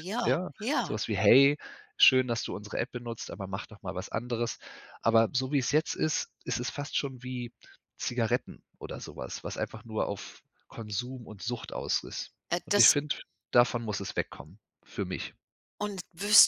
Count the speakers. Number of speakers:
2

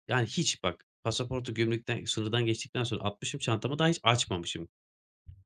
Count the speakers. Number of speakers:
1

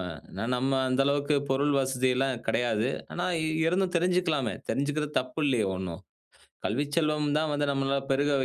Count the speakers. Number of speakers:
1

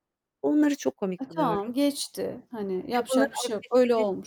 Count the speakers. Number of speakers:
2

